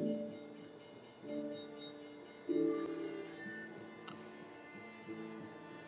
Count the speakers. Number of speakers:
0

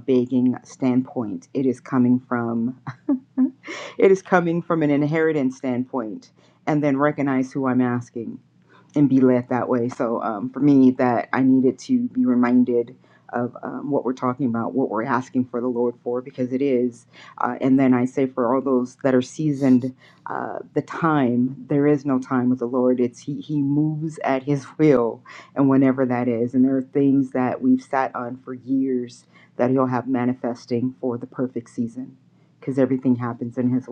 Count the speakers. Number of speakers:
1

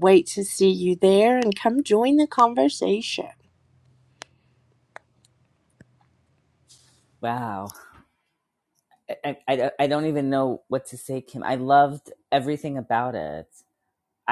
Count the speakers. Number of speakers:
2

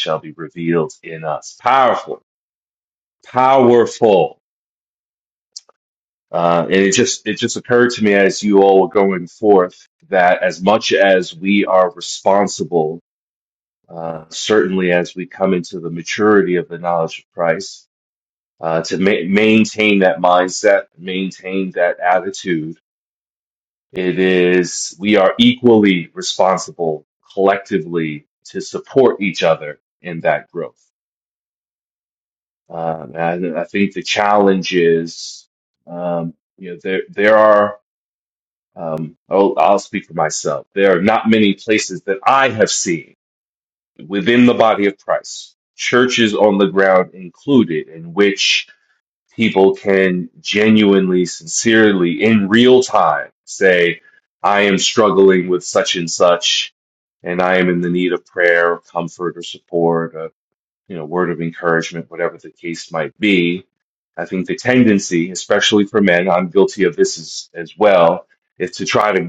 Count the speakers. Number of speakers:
1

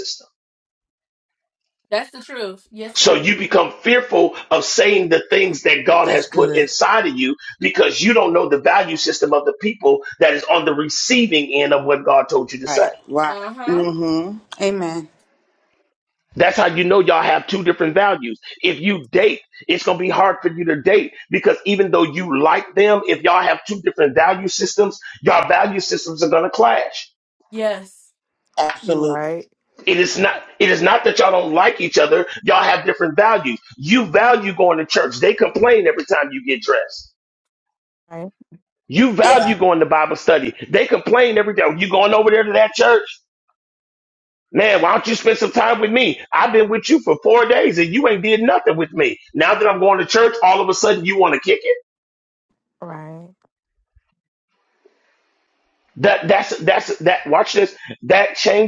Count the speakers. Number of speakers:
5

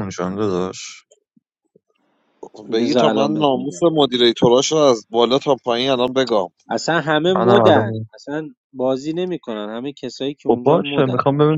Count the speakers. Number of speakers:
3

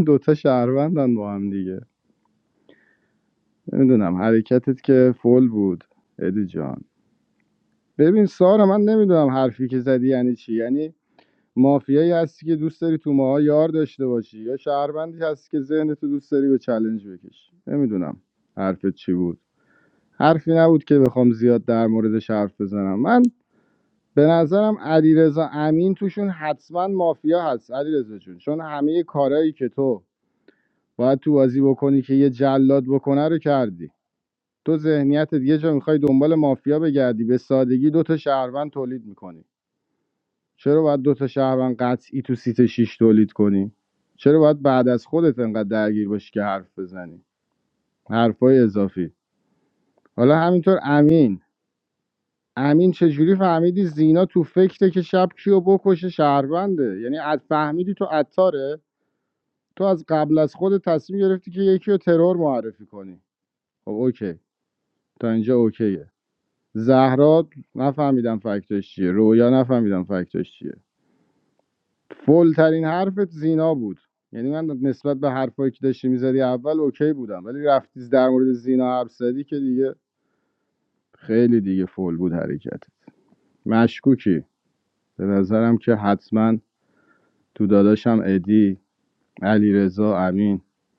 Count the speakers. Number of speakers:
1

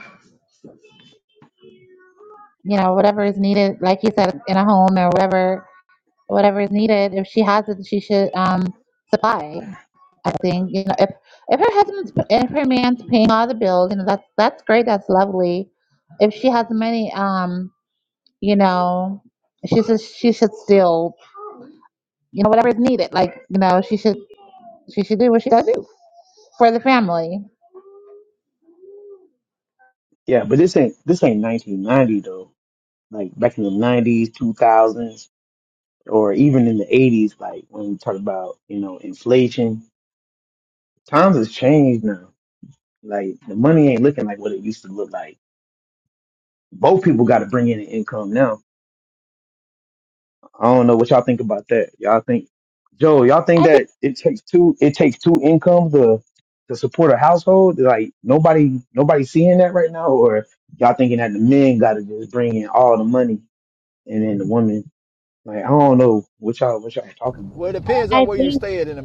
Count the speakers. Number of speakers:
3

